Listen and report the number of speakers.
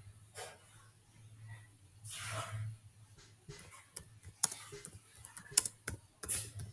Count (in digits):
0